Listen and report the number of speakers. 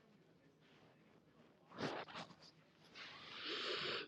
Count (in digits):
0